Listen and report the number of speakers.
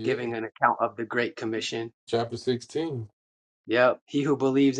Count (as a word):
two